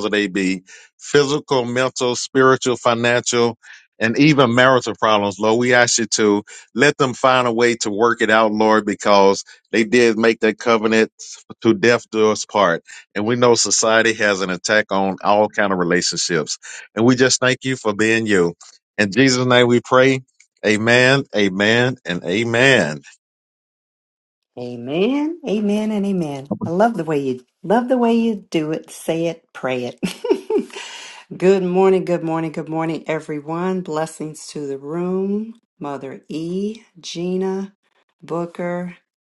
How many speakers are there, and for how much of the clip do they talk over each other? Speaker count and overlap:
2, no overlap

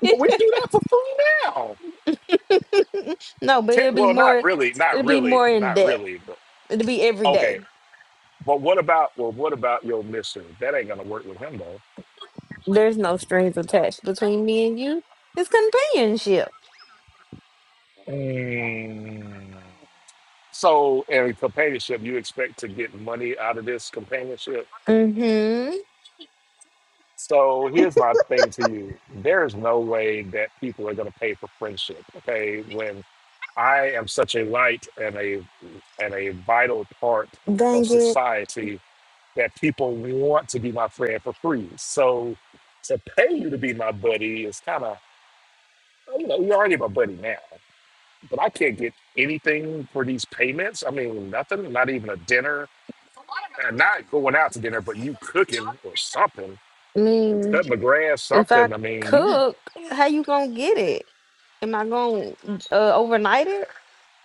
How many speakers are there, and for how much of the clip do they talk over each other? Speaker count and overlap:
2, about 6%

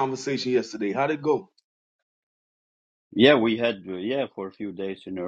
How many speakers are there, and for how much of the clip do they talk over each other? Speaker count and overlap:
2, no overlap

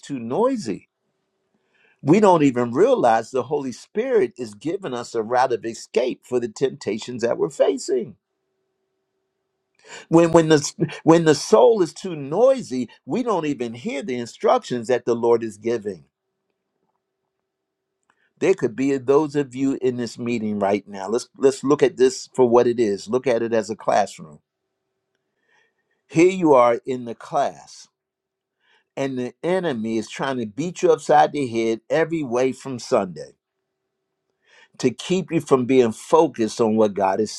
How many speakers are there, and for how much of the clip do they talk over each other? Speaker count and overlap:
1, no overlap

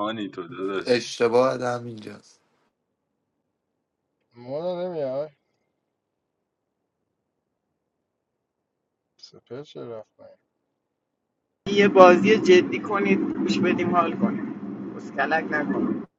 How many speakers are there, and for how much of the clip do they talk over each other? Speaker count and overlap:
4, about 1%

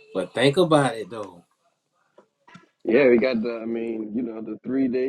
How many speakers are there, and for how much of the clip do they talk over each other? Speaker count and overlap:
2, no overlap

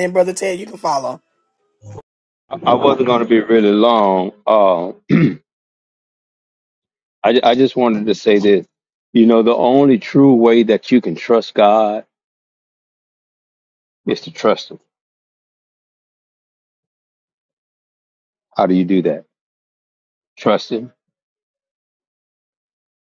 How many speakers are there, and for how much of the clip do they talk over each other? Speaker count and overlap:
2, no overlap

